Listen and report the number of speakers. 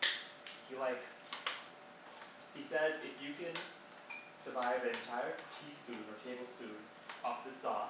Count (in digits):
1